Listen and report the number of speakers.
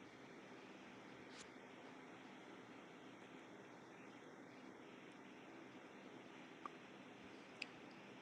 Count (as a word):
zero